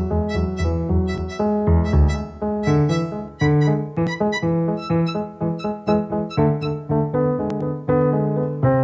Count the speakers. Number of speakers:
zero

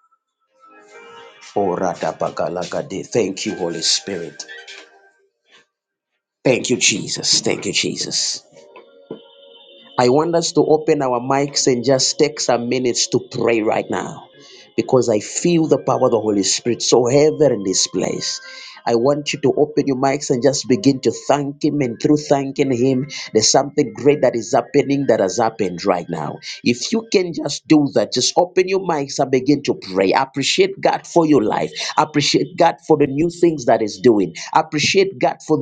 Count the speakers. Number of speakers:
one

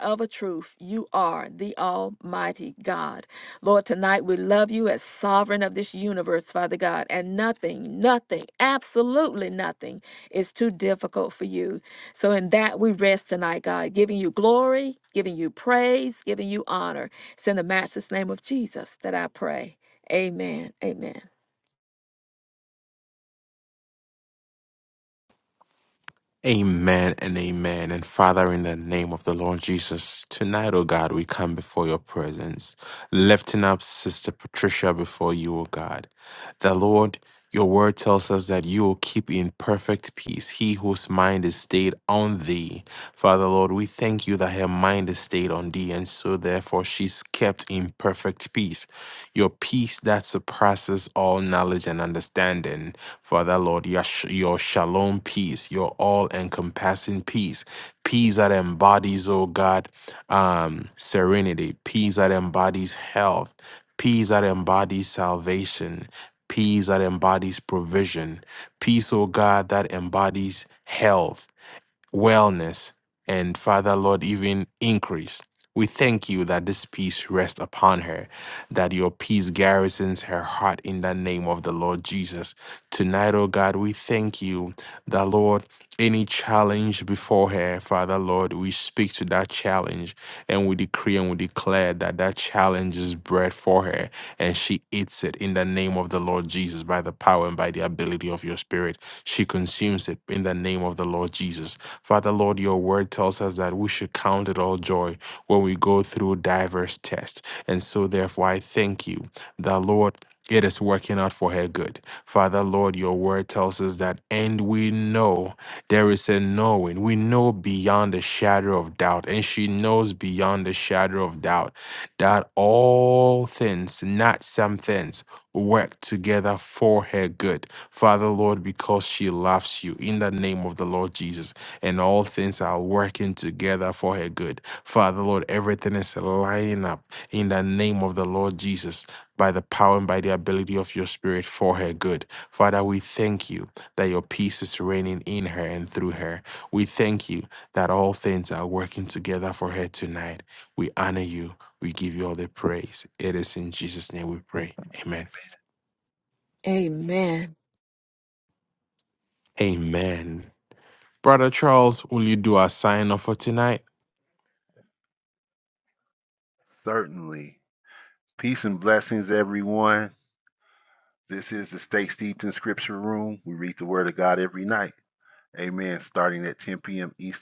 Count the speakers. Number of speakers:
three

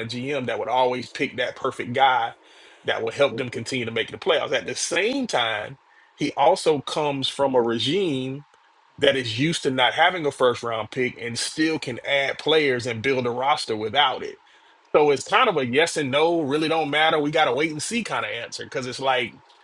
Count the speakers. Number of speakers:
one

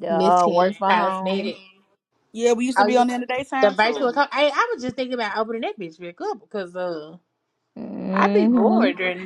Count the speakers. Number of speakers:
three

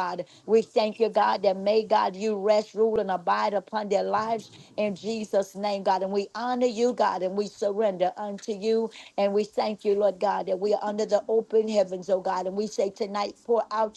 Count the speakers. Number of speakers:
one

